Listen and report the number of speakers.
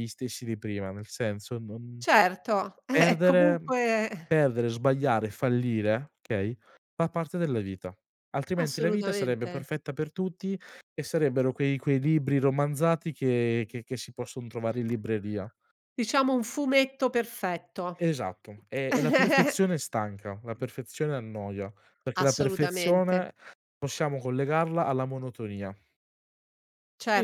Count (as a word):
two